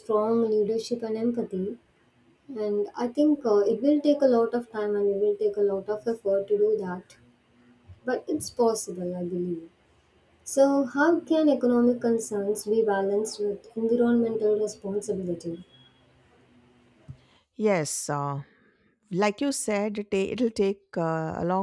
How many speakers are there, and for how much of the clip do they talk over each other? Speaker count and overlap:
2, no overlap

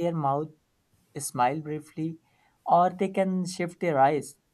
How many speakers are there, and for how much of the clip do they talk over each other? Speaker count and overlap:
1, no overlap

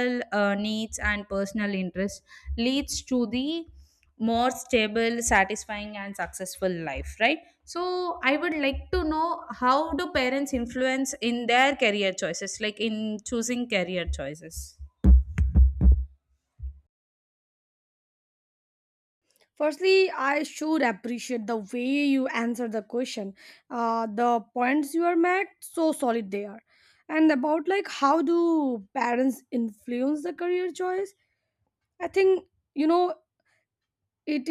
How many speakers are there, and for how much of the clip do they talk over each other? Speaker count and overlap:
2, no overlap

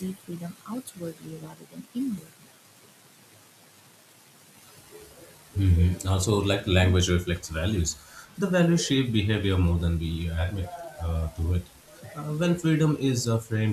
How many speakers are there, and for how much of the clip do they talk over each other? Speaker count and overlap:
2, no overlap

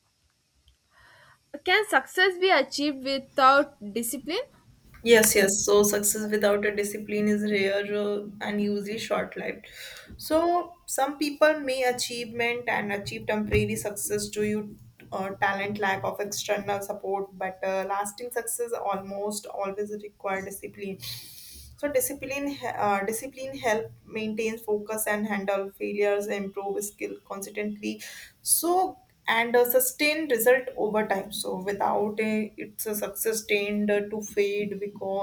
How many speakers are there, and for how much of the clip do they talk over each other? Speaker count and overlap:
2, no overlap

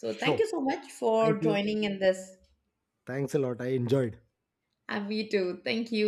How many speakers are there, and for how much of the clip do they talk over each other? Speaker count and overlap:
2, about 12%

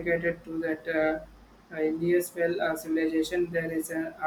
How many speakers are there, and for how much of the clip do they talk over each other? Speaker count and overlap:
1, no overlap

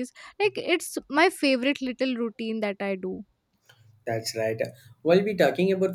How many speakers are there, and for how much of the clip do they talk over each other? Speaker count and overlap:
2, no overlap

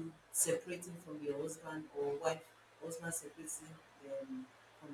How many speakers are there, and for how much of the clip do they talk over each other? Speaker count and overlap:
1, no overlap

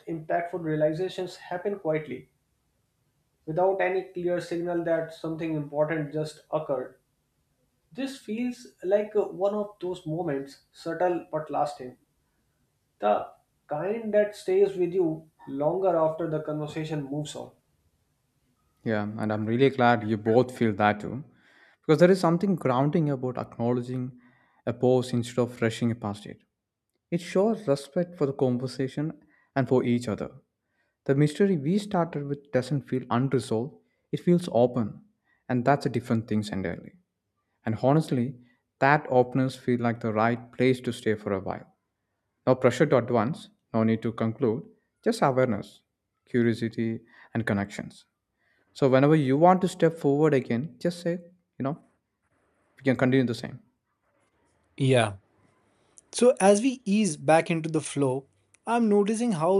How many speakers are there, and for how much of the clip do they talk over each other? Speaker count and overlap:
3, no overlap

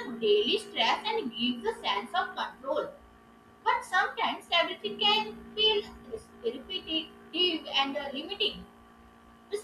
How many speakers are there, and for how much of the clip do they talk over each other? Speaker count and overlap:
1, no overlap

